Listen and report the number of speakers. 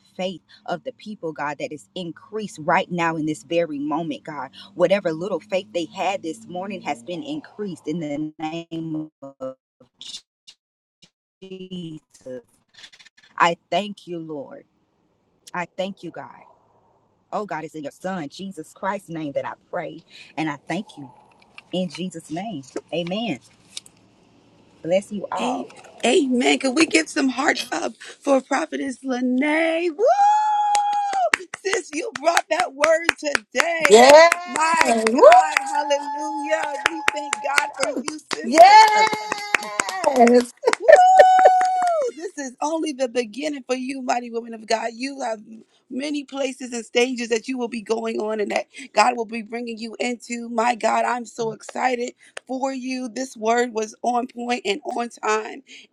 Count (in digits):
3